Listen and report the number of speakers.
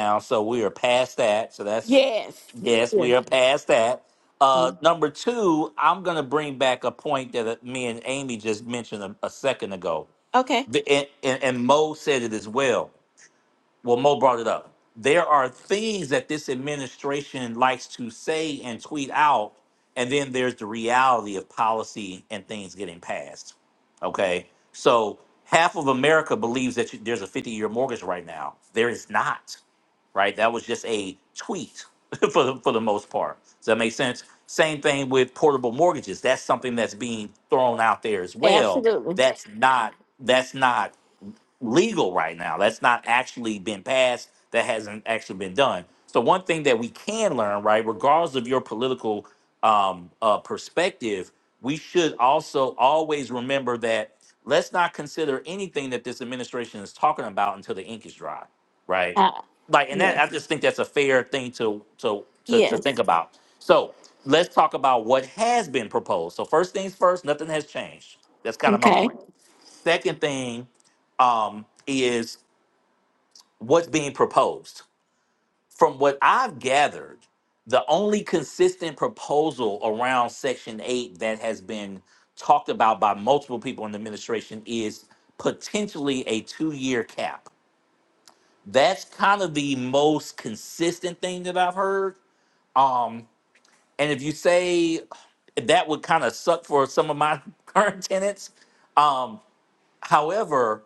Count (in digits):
2